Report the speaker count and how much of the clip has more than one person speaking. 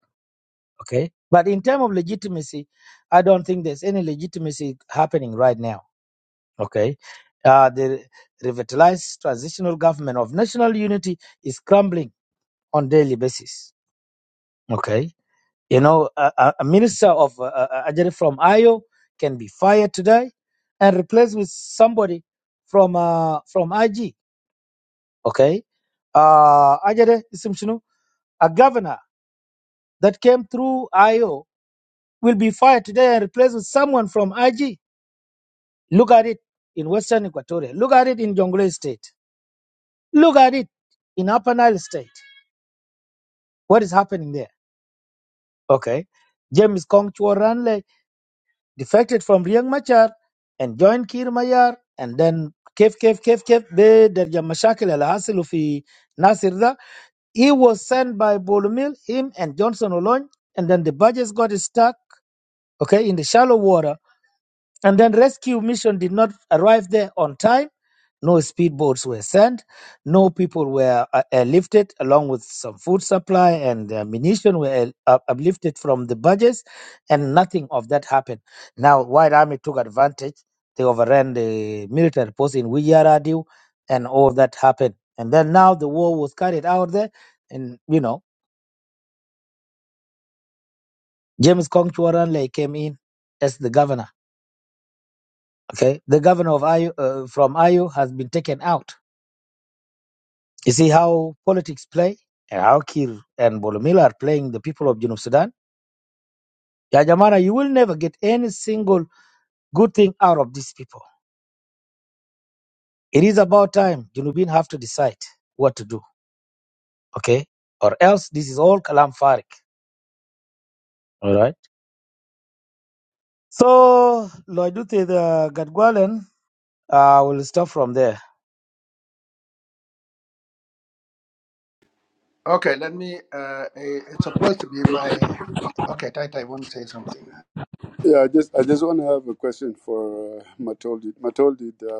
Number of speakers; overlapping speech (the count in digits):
3, no overlap